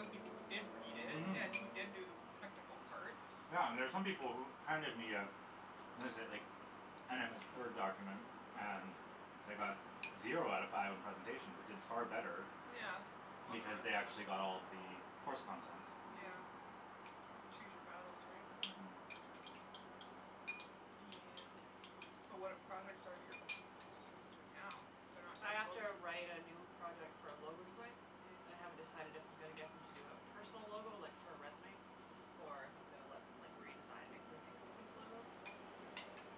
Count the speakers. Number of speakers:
3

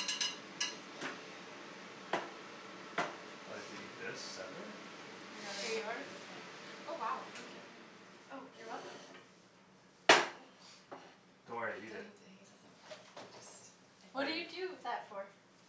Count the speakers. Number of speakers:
3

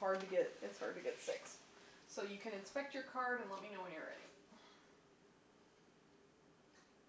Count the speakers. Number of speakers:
1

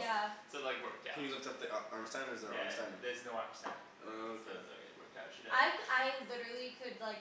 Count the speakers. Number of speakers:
3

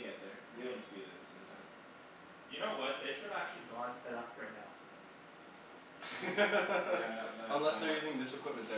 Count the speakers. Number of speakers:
3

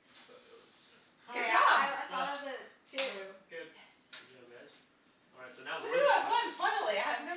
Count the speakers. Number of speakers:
4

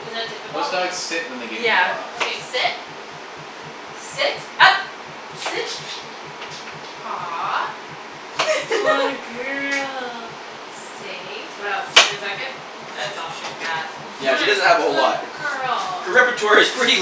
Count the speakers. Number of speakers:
4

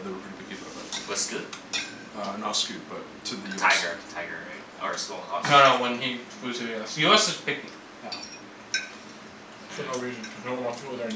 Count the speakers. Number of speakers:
4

